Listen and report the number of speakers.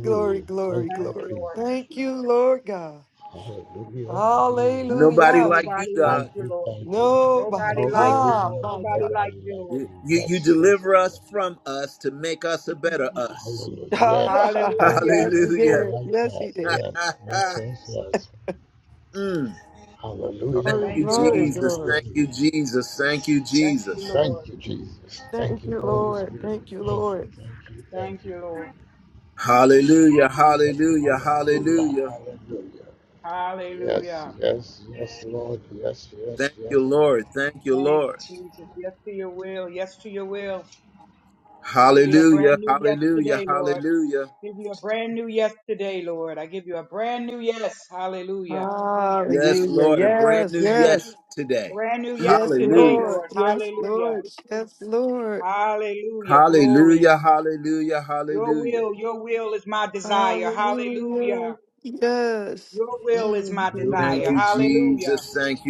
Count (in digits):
4